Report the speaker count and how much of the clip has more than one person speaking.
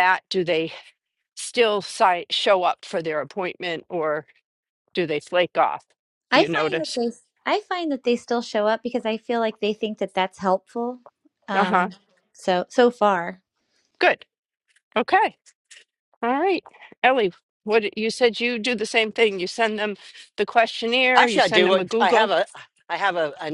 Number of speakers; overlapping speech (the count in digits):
3, about 9%